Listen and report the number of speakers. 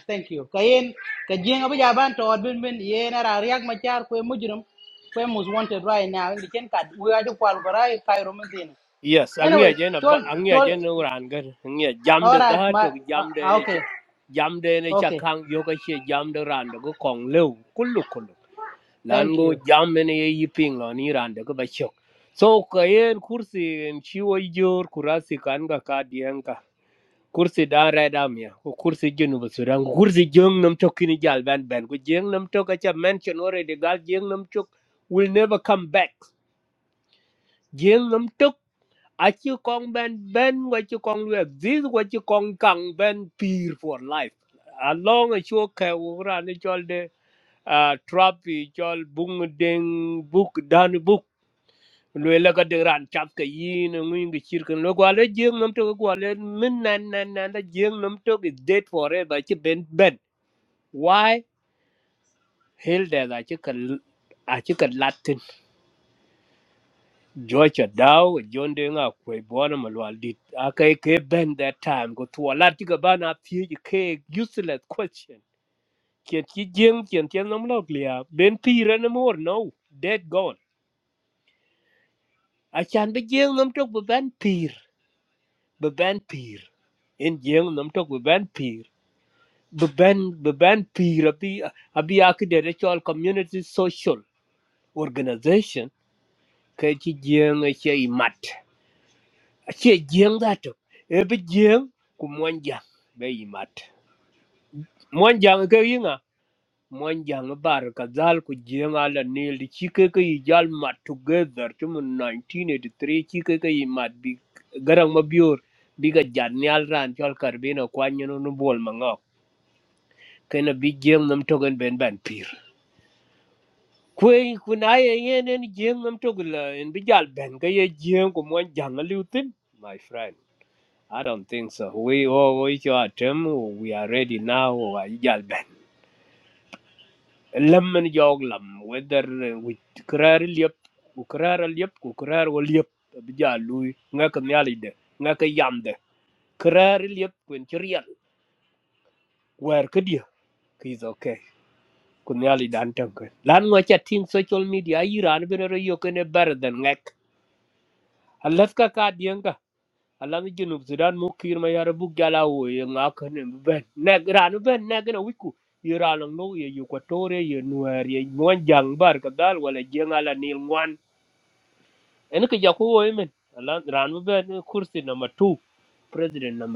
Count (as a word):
two